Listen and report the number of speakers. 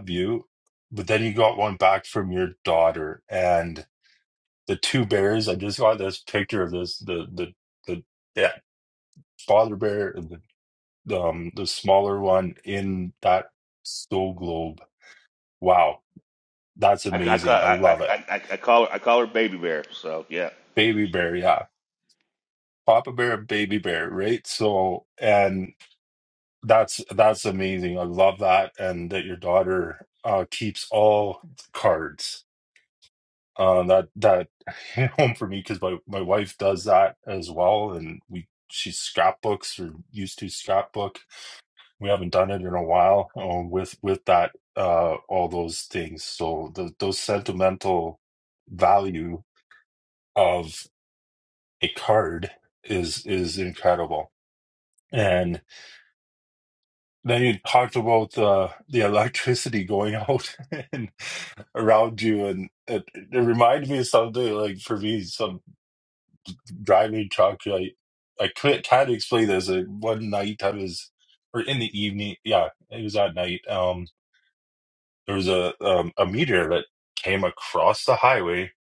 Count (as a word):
two